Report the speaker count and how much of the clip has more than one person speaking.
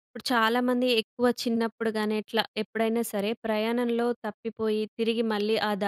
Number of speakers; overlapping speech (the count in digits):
1, no overlap